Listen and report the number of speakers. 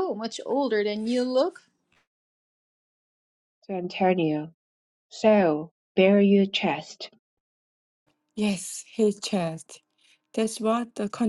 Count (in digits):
3